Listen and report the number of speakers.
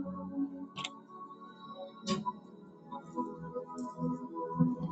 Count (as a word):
zero